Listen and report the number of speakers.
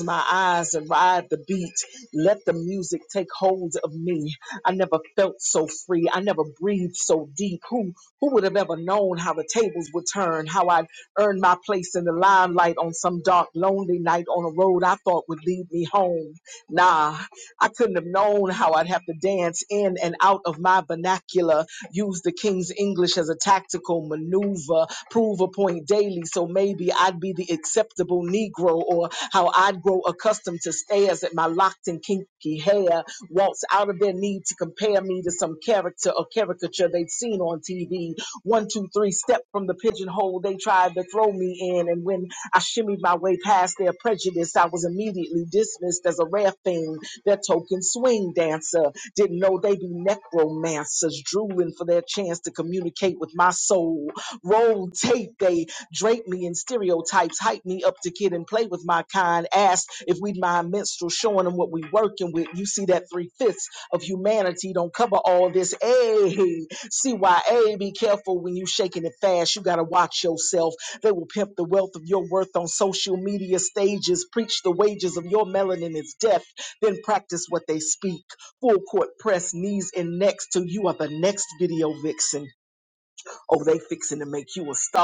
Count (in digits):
1